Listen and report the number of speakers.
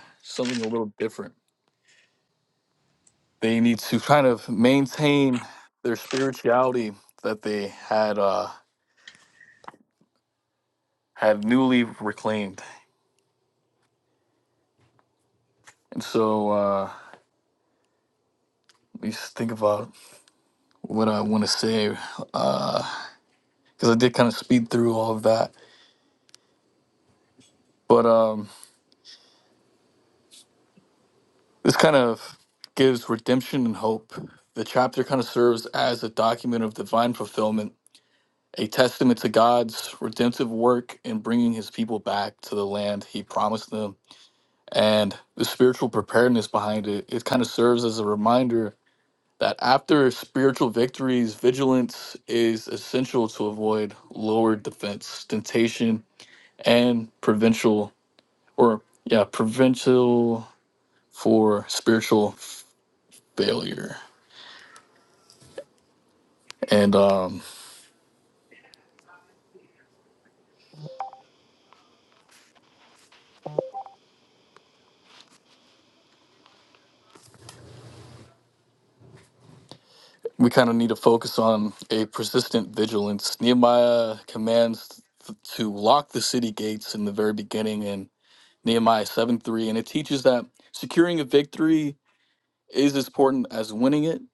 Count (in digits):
1